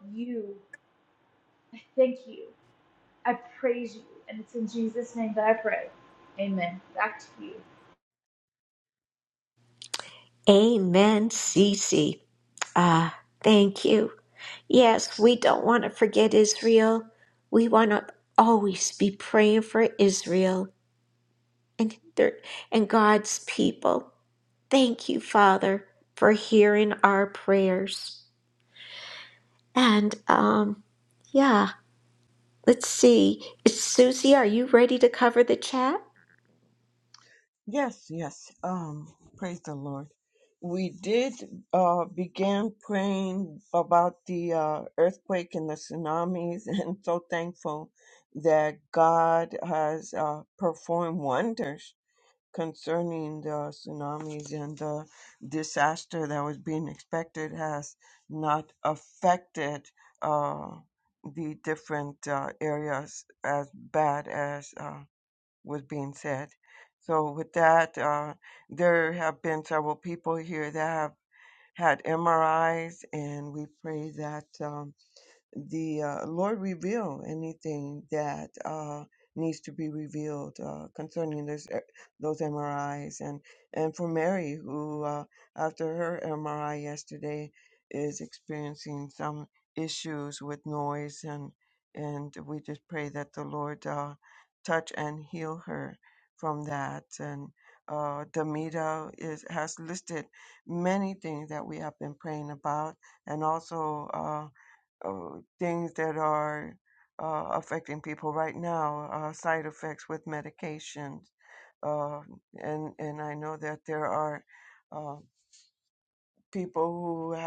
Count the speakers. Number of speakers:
three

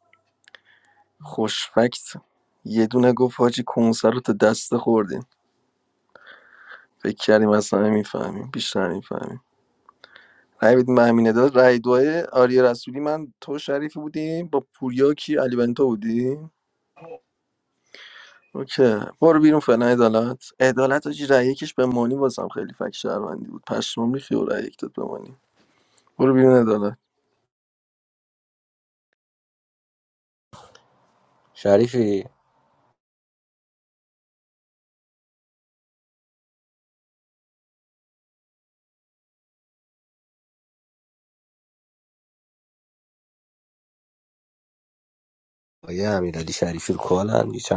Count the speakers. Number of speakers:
two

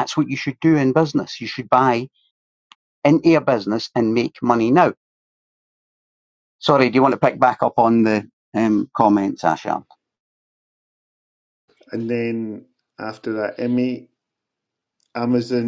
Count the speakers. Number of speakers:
two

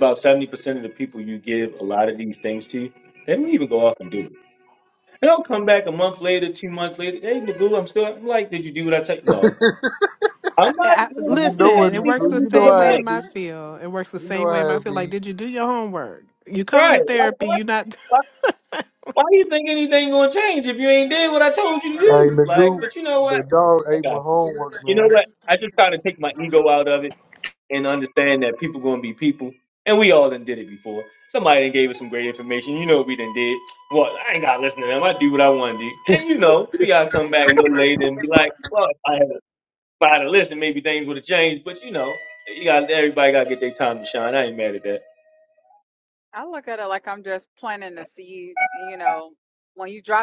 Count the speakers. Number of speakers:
four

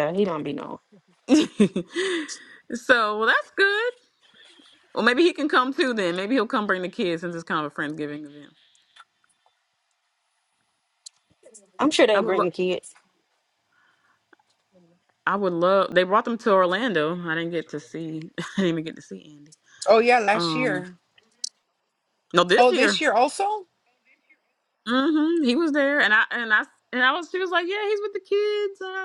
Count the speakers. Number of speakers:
three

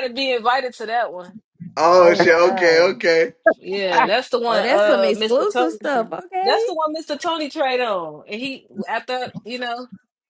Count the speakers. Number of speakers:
three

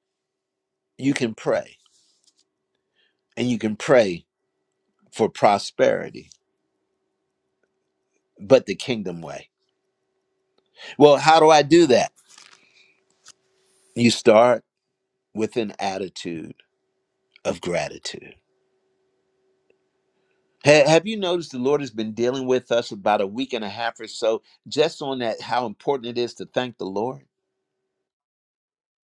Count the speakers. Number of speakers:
one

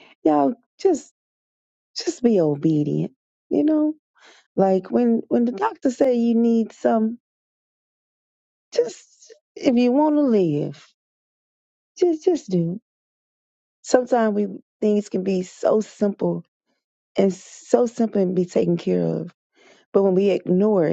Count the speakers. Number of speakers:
one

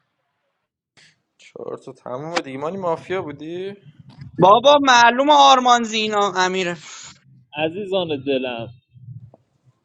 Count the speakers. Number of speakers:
three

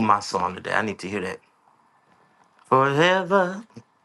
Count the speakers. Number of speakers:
one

